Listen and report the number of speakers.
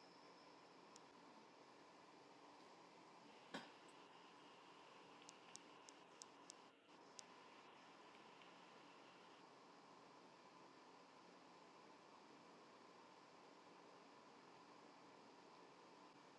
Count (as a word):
zero